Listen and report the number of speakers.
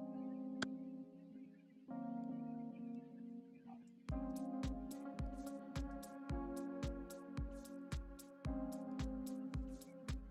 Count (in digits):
0